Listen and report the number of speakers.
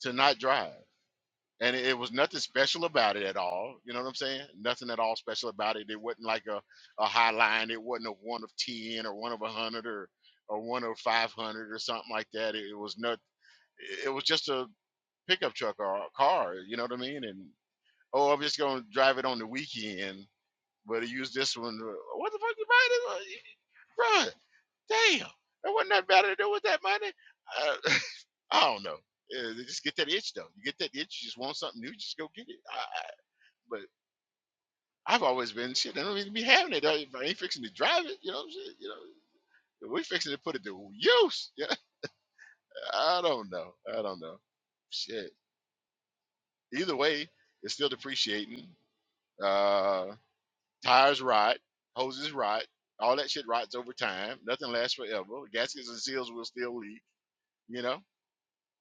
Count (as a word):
one